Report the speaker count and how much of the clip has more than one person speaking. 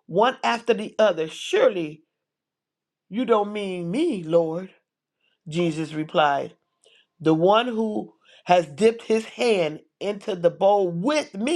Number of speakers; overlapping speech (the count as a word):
one, no overlap